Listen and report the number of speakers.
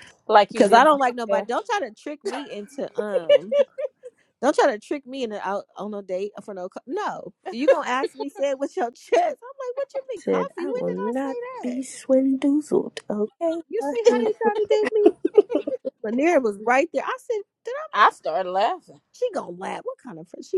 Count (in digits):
3